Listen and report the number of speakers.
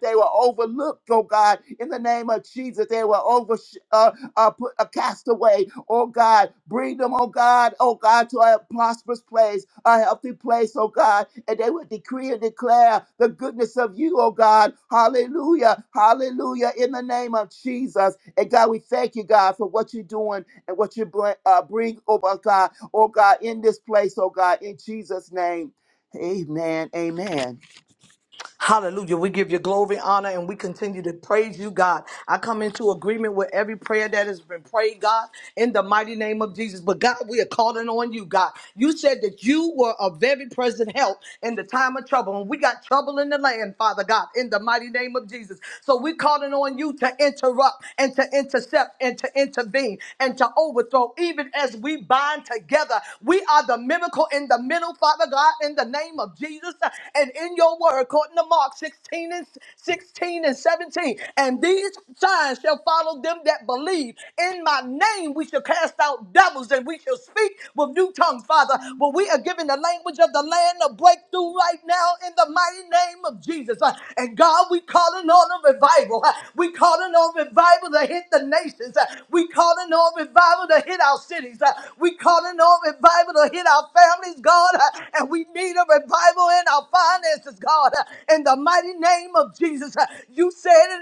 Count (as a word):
two